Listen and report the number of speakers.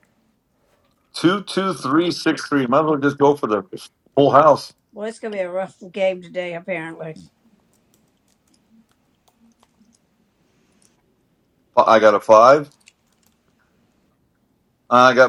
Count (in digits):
2